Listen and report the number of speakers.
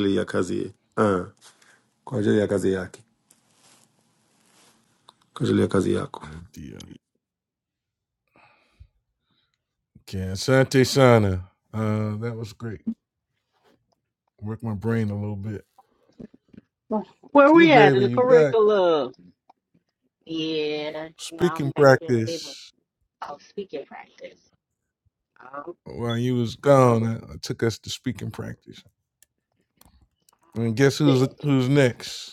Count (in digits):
3